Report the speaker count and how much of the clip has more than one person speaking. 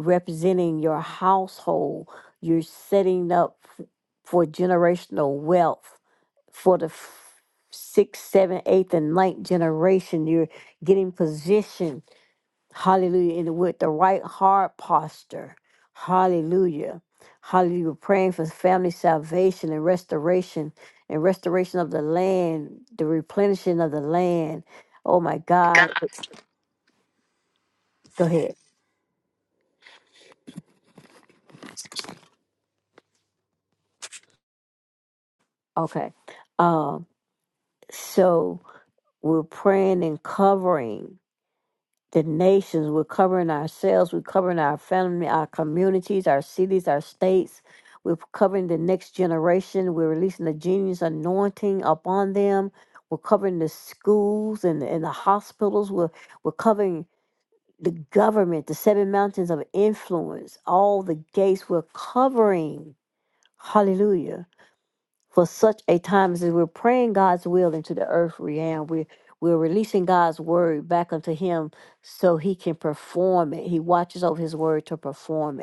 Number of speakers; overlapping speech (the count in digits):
1, no overlap